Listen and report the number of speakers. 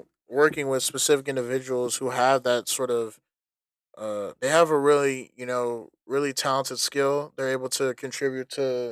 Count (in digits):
1